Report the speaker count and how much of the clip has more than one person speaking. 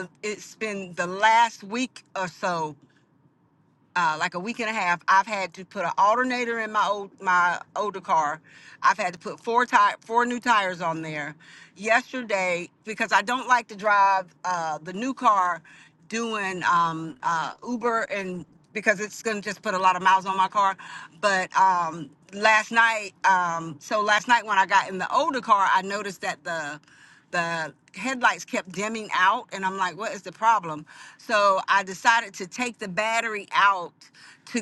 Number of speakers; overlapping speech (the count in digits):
1, no overlap